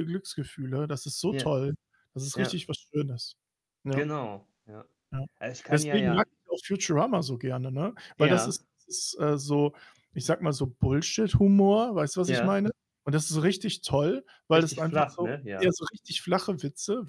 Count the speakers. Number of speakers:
2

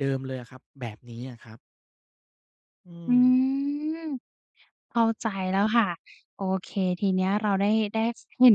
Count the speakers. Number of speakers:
2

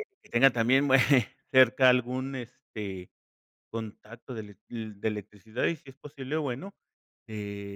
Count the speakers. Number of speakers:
1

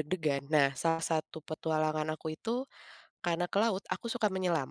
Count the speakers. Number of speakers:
1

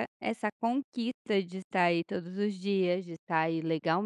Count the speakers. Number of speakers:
1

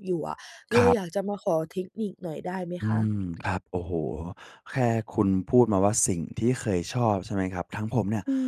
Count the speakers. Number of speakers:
2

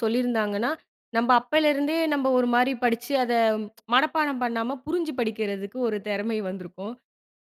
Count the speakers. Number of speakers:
1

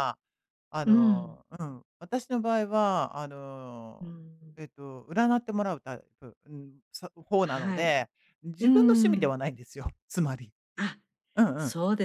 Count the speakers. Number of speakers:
2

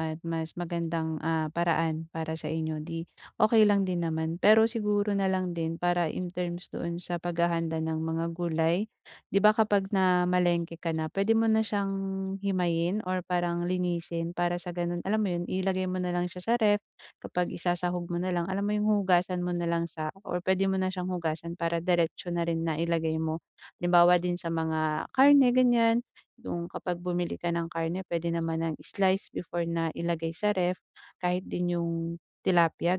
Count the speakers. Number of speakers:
1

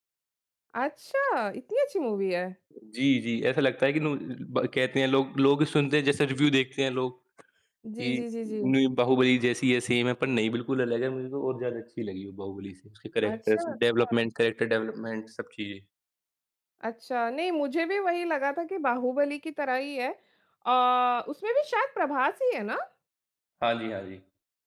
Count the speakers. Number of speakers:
2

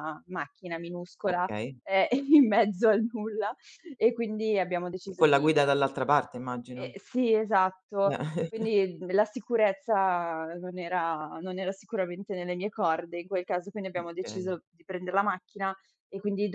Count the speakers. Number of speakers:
2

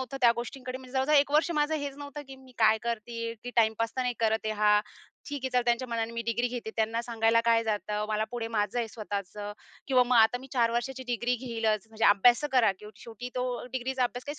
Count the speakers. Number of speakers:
1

